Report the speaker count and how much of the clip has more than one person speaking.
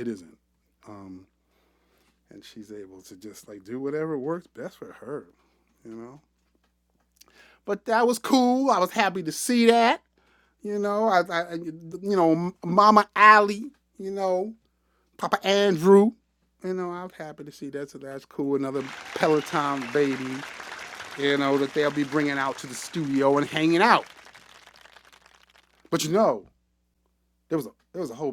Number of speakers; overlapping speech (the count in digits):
1, no overlap